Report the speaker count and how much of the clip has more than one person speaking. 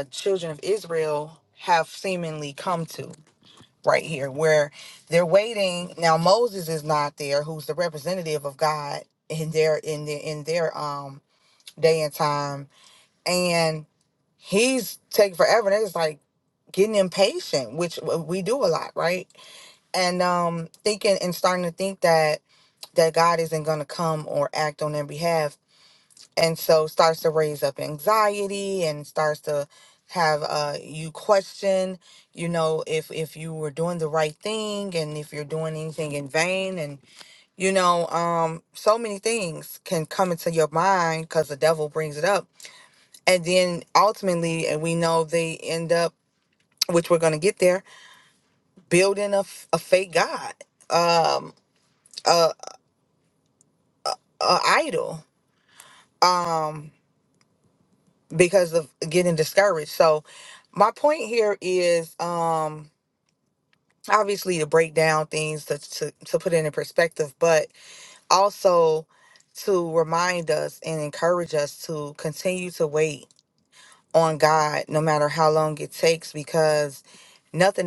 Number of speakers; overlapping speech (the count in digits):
1, no overlap